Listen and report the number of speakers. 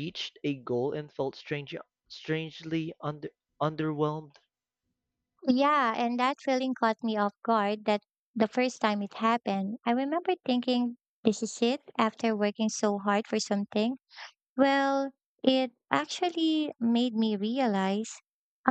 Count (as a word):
two